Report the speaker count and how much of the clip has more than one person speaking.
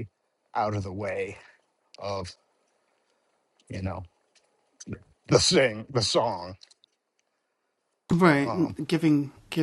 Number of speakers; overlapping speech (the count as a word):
two, about 3%